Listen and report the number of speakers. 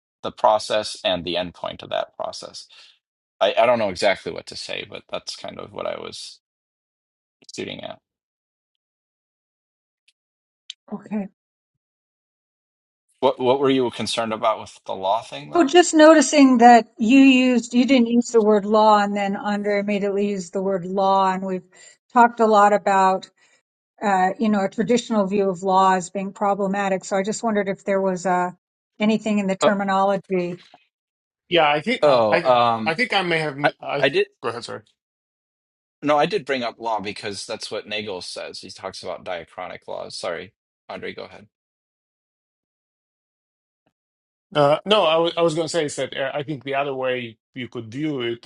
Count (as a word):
three